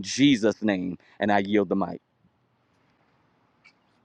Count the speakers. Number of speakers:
1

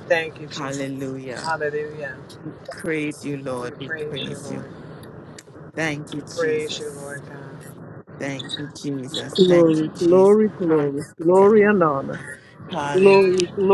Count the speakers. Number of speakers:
3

